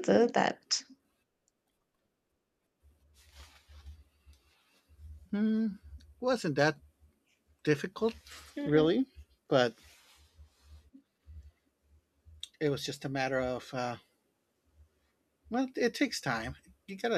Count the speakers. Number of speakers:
2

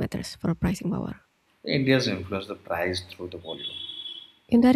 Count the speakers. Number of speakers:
2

